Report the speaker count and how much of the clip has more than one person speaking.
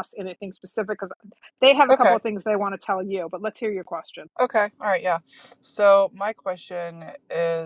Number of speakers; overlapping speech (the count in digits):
2, about 4%